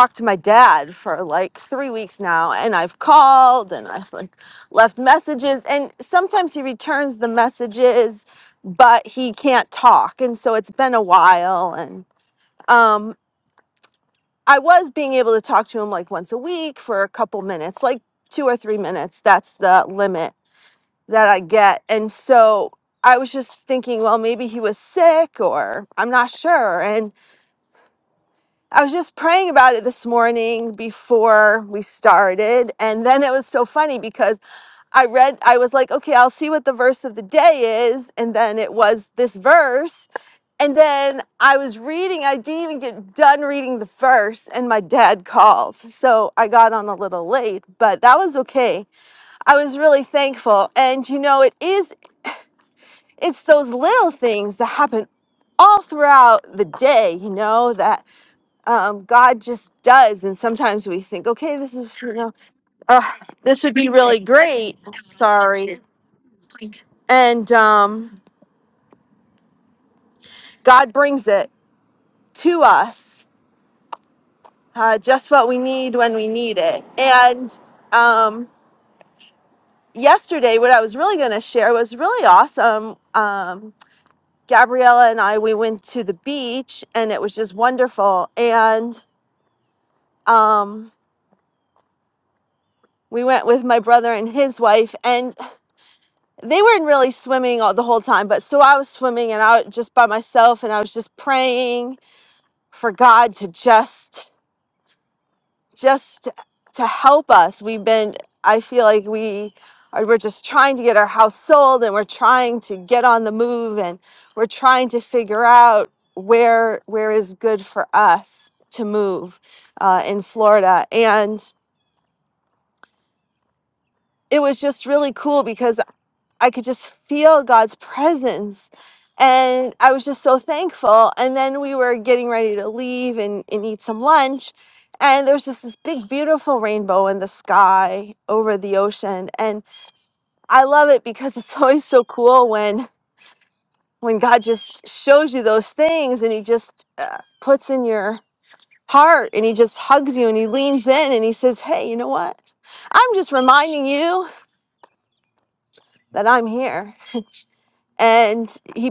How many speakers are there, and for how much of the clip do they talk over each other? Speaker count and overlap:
one, no overlap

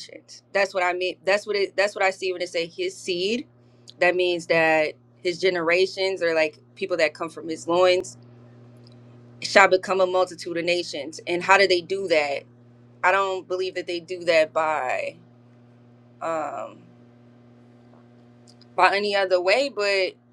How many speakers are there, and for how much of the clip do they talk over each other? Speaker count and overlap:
one, no overlap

